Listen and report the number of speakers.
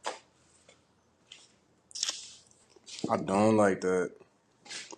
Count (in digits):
1